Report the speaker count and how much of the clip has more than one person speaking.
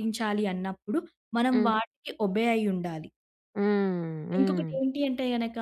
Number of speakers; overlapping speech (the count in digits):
2, about 12%